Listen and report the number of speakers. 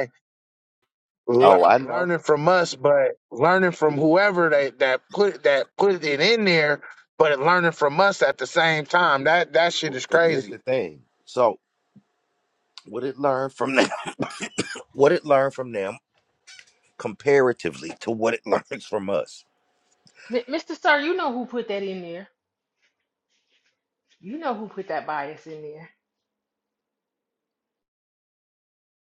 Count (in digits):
3